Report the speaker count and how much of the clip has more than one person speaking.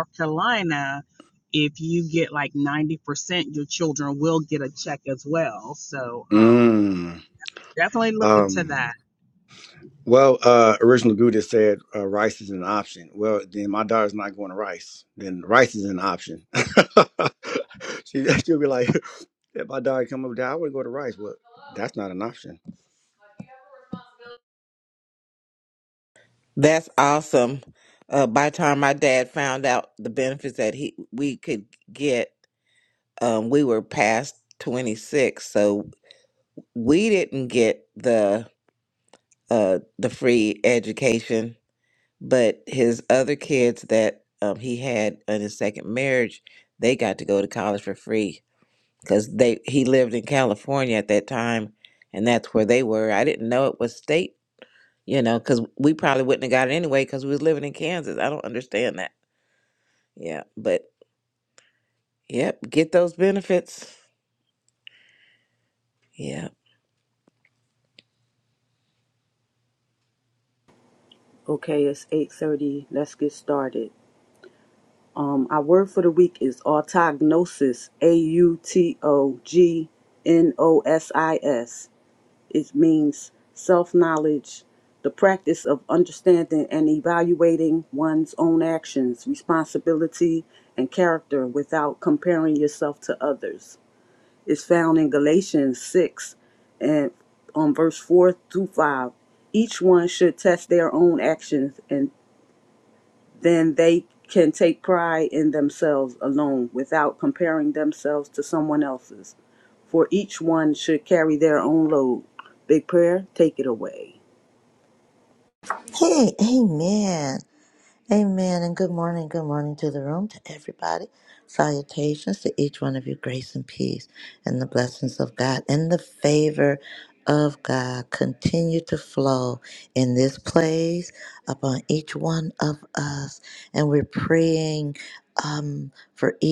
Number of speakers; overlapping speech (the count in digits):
5, about 1%